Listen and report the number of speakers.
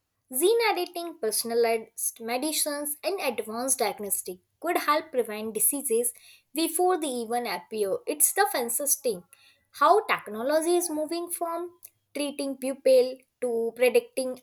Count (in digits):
1